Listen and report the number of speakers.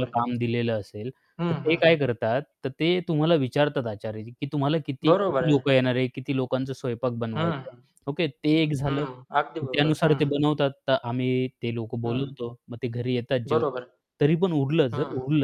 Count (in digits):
2